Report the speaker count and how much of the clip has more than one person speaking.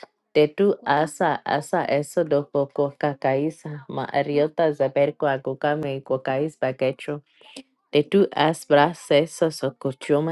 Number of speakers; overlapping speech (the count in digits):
1, no overlap